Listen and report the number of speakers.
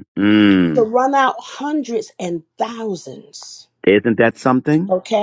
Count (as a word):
two